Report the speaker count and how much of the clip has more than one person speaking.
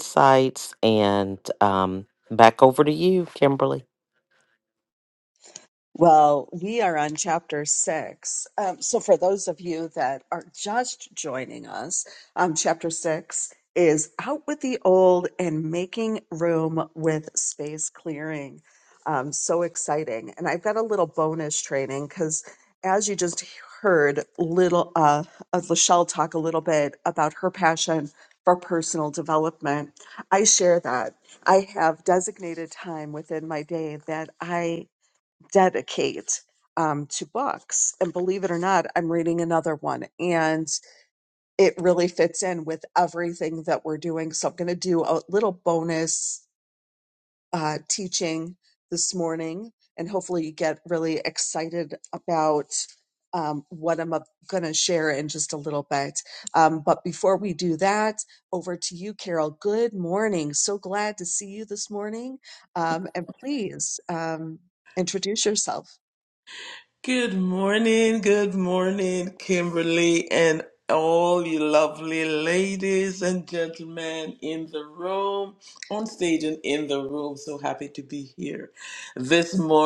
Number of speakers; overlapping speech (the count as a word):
three, no overlap